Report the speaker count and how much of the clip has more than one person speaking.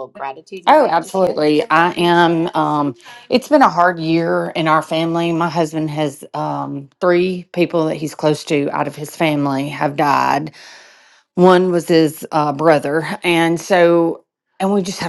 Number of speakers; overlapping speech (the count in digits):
2, about 5%